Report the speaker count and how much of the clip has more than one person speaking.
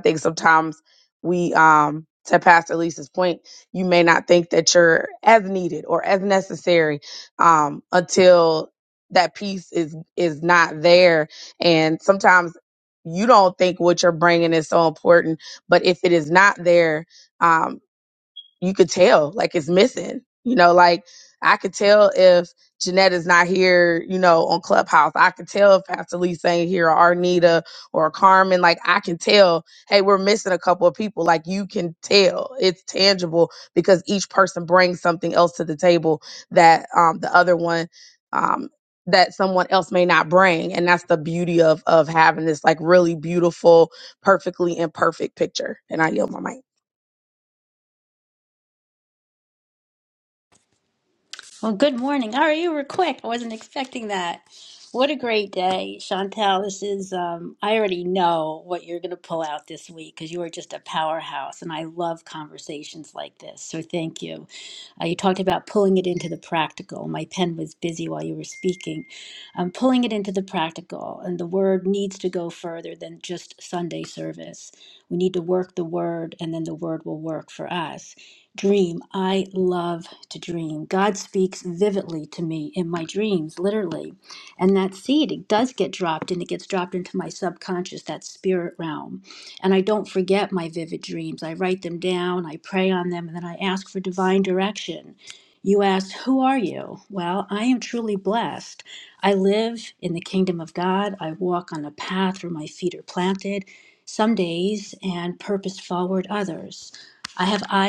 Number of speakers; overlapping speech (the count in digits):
2, no overlap